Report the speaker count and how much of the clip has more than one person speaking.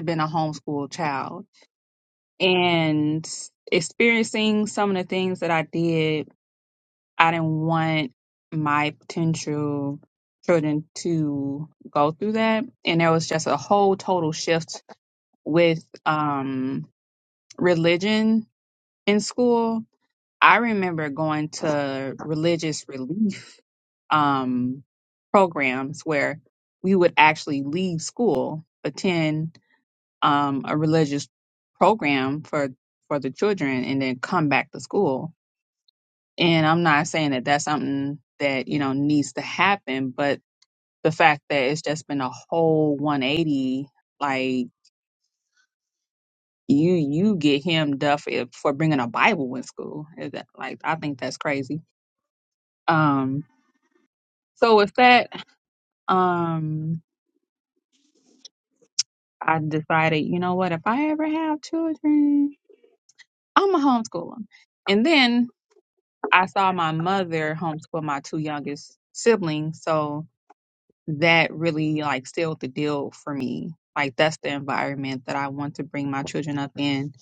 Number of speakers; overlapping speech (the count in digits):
1, no overlap